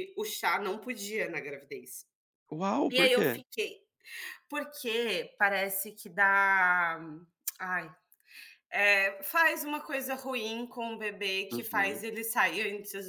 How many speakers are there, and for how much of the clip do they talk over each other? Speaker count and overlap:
two, about 7%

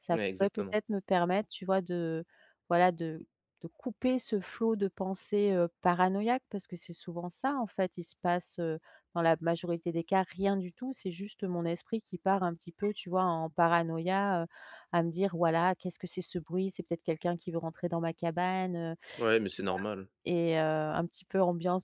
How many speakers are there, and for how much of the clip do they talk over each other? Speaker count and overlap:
two, about 4%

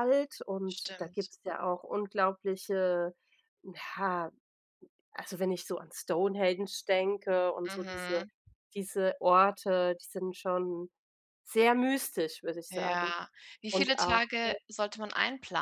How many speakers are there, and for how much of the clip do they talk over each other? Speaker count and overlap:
two, about 14%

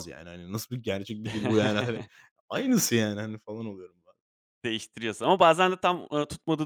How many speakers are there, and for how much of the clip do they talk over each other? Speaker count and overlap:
two, no overlap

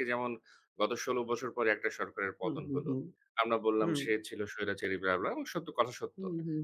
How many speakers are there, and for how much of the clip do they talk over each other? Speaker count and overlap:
two, about 13%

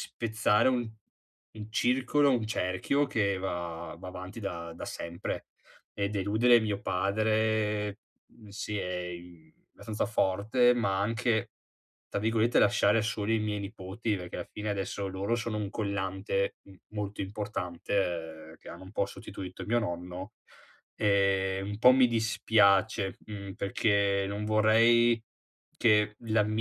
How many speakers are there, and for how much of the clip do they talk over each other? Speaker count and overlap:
one, no overlap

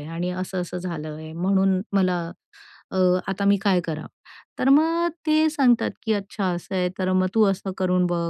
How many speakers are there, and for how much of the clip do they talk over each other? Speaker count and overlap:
one, no overlap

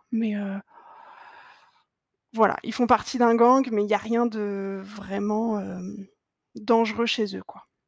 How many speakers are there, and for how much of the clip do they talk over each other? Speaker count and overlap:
one, no overlap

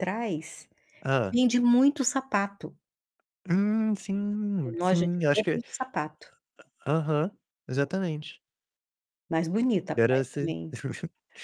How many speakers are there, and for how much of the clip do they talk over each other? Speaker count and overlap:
two, about 13%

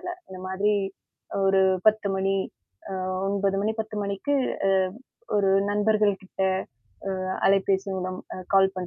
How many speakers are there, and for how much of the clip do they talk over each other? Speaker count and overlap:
one, no overlap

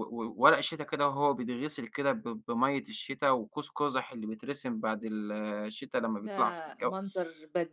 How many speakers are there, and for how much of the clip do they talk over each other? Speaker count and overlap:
two, about 9%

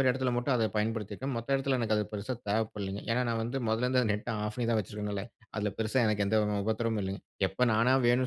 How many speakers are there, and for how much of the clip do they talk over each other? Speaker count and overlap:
one, no overlap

